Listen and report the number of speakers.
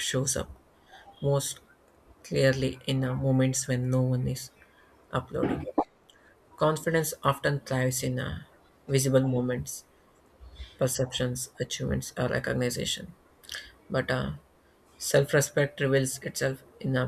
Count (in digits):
1